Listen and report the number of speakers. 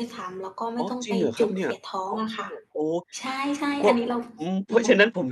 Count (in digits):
2